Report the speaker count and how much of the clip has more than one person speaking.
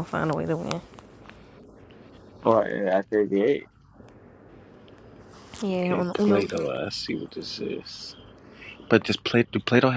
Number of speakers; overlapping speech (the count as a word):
three, about 7%